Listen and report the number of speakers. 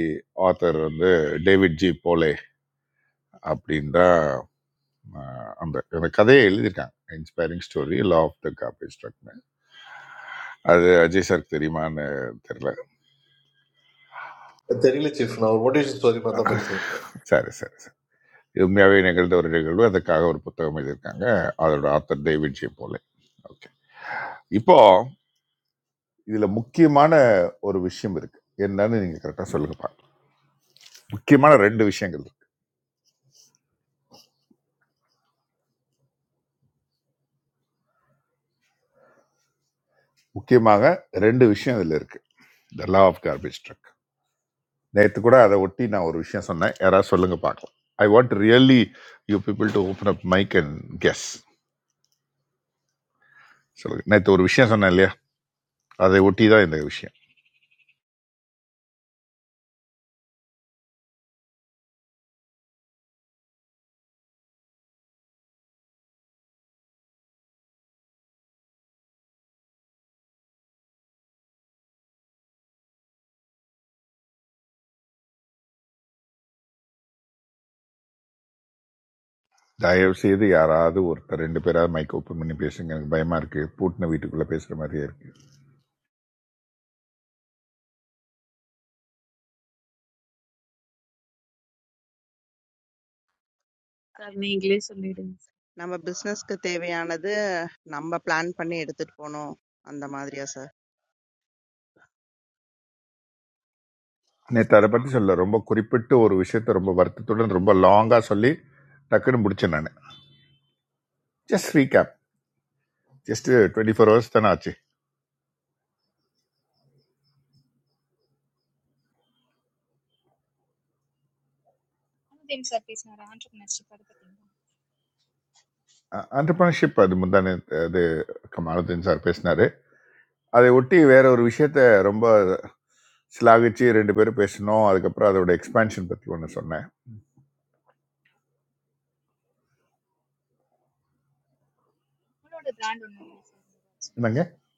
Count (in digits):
5